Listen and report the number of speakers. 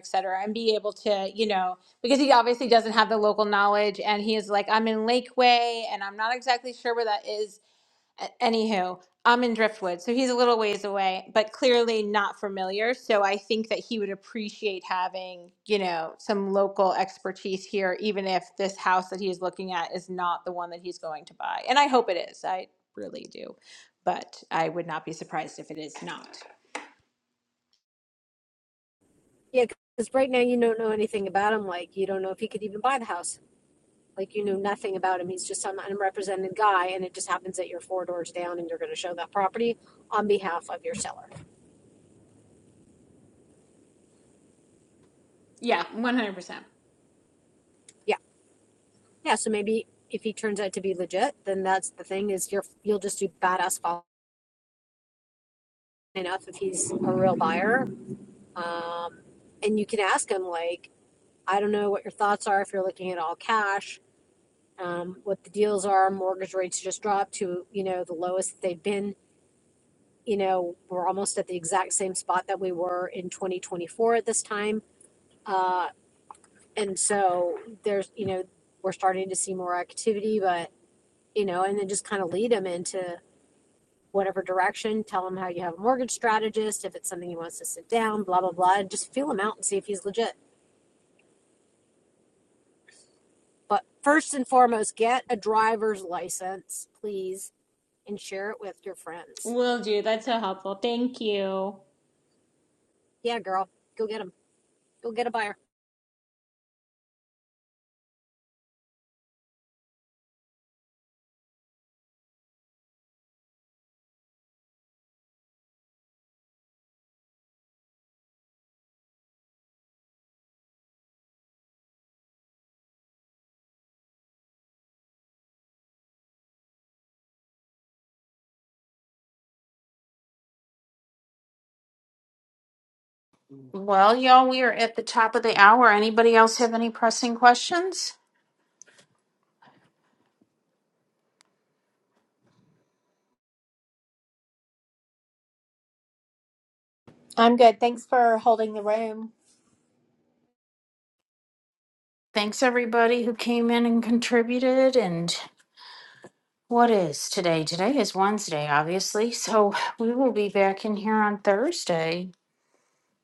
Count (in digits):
4